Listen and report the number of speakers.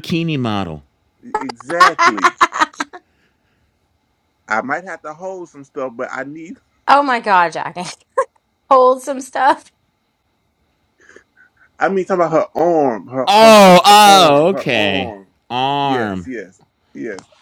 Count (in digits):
3